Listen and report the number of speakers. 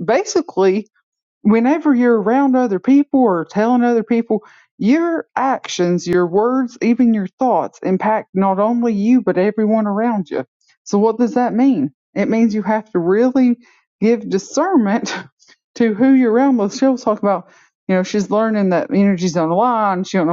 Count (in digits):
1